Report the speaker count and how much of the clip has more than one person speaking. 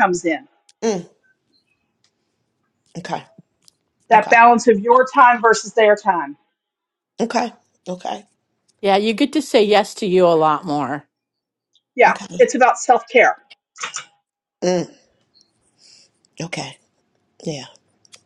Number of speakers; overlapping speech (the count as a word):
three, about 3%